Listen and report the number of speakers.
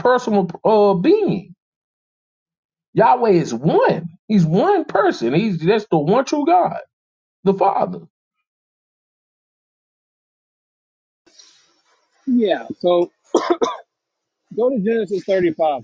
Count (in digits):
2